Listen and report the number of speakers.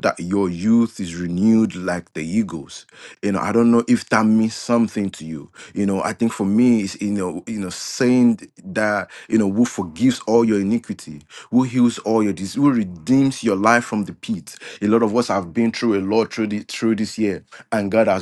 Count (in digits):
1